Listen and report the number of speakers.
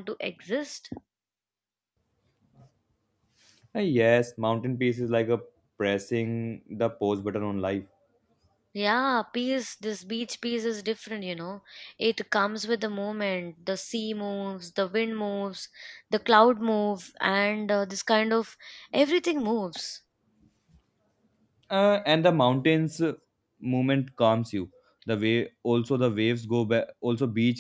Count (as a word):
two